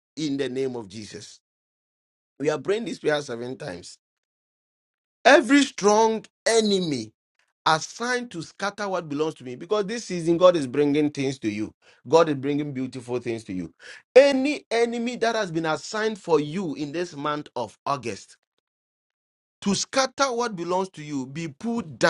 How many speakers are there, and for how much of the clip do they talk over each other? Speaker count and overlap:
one, no overlap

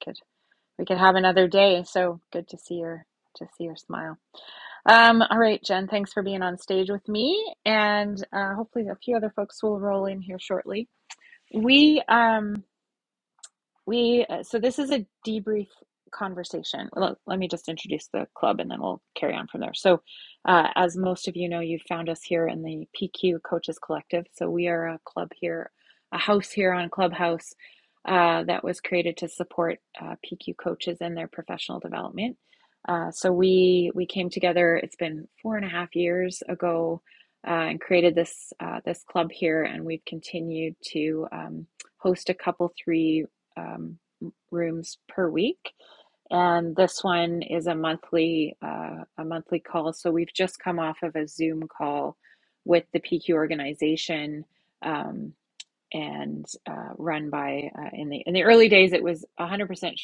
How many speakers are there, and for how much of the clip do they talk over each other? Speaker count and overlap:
one, no overlap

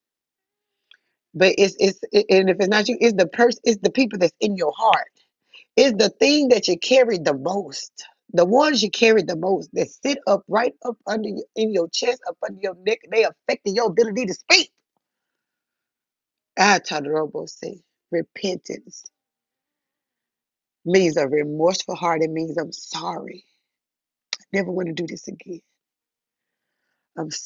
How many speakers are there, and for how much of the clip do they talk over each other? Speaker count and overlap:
one, no overlap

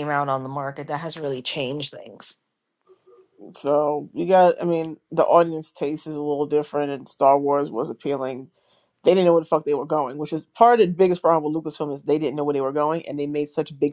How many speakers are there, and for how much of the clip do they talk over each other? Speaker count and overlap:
two, no overlap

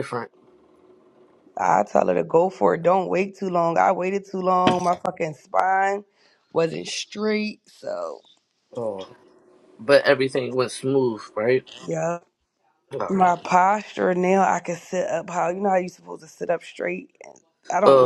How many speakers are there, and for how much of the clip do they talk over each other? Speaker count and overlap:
two, about 2%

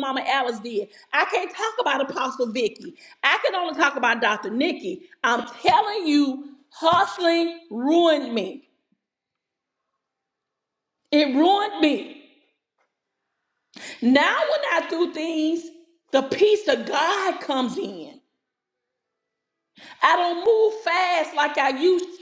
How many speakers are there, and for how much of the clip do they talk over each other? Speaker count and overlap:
one, no overlap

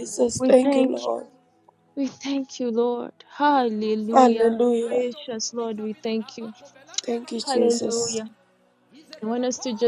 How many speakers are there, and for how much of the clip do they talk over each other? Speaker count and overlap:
three, about 55%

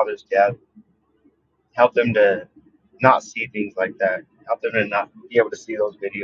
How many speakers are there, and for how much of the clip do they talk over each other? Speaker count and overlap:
one, no overlap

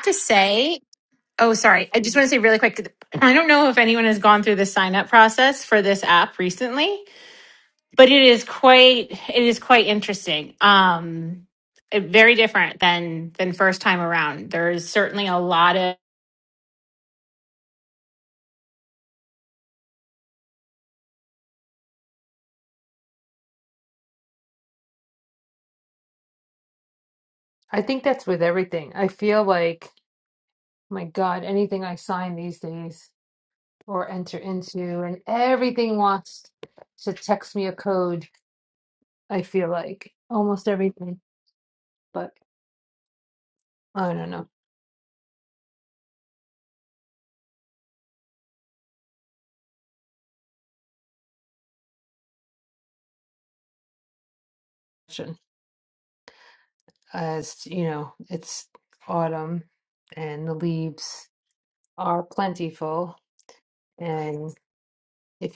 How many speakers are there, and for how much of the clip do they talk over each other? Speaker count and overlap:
two, no overlap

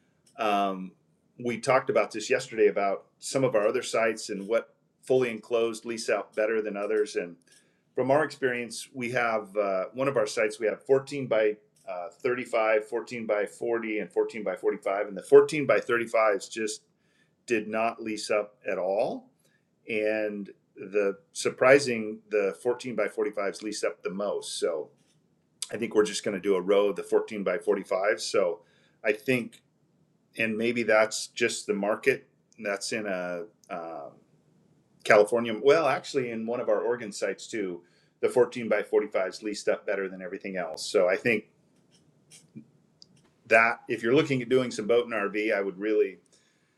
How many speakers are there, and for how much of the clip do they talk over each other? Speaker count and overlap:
one, no overlap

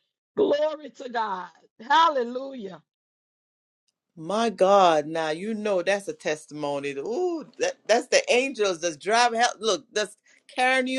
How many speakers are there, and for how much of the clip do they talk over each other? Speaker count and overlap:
two, no overlap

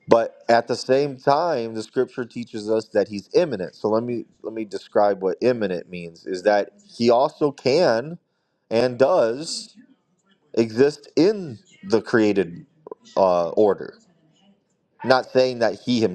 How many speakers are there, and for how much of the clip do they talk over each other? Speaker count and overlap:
one, no overlap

